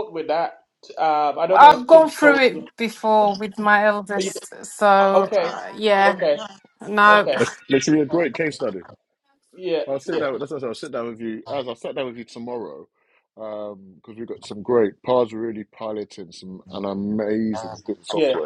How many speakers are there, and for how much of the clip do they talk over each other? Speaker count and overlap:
three, about 14%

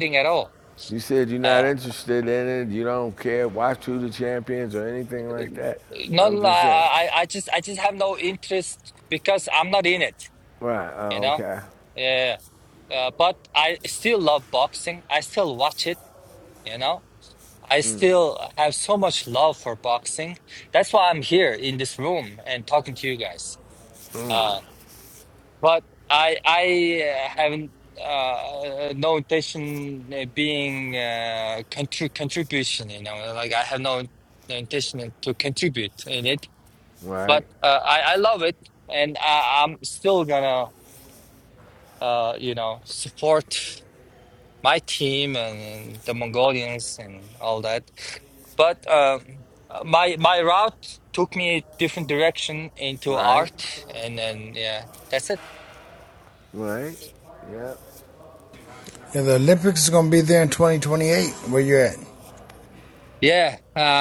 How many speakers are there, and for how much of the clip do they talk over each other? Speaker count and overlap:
three, about 3%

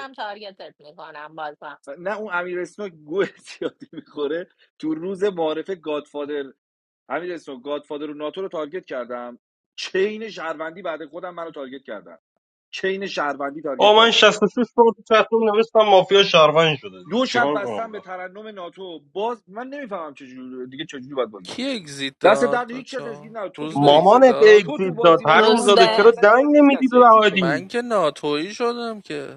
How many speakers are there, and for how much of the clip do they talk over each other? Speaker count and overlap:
four, about 22%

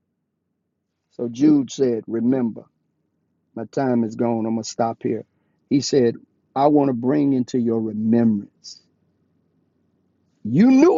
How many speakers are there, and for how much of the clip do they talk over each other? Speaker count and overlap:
one, no overlap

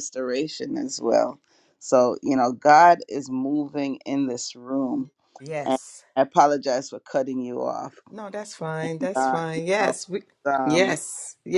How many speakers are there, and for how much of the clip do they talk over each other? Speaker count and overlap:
two, about 12%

